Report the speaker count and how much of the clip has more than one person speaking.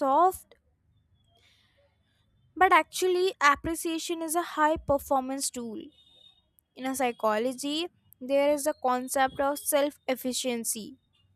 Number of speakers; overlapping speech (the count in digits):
1, no overlap